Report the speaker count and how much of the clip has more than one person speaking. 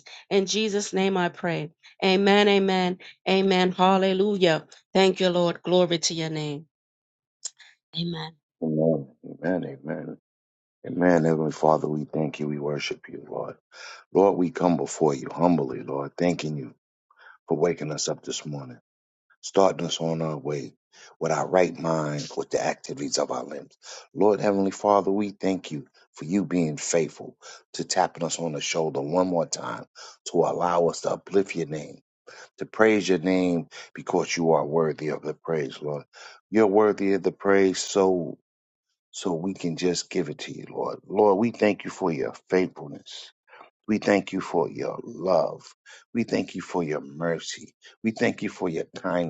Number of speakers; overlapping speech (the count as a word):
two, no overlap